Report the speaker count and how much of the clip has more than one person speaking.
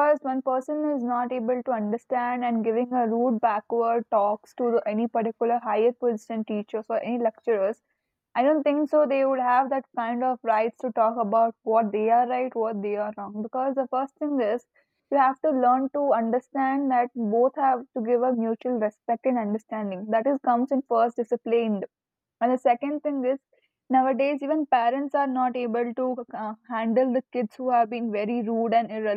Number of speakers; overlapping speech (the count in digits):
1, no overlap